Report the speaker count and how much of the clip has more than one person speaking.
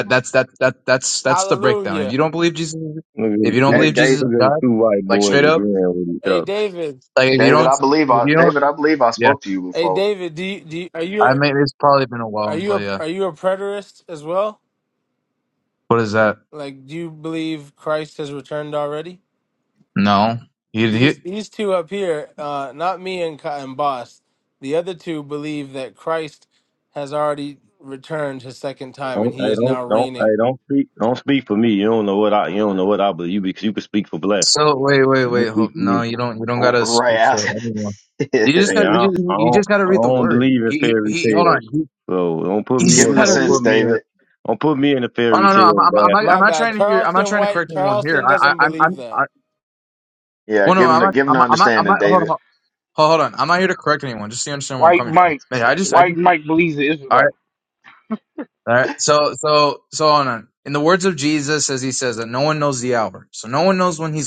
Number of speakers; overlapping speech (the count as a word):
five, about 29%